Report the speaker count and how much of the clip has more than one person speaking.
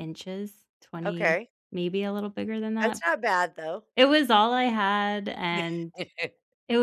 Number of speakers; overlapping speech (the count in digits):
2, about 8%